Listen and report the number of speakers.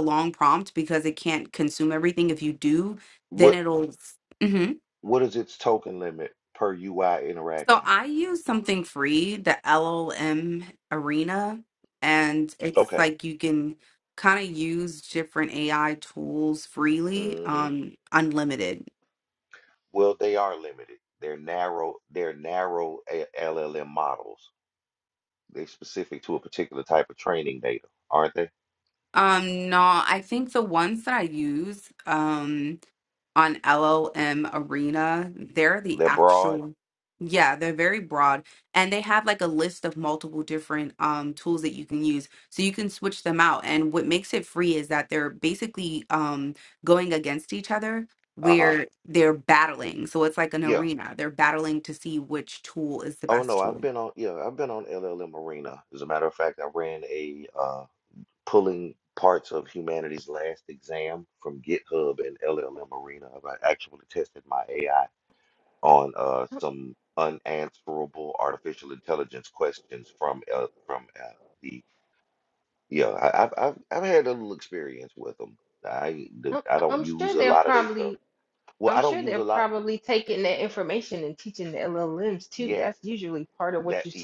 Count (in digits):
3